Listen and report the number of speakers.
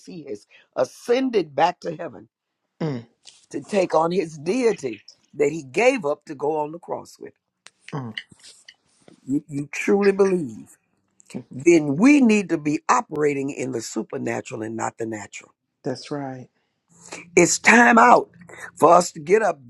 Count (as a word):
two